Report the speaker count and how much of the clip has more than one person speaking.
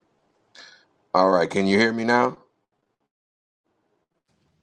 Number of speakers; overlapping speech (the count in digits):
1, no overlap